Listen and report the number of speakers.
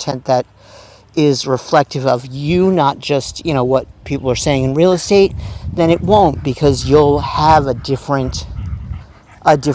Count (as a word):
one